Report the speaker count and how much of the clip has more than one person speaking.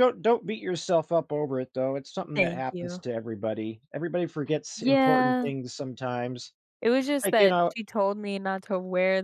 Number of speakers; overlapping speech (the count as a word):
two, about 20%